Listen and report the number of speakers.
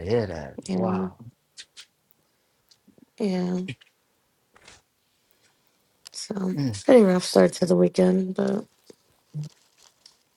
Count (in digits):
2